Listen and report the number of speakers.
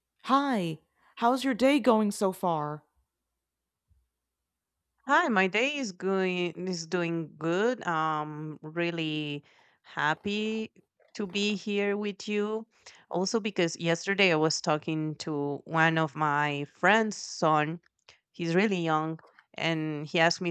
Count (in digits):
2